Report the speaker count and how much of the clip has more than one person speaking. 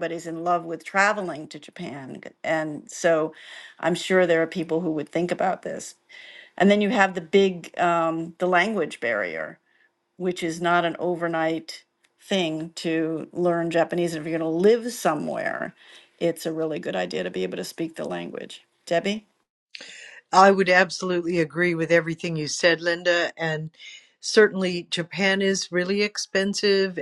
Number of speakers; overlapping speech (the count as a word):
two, no overlap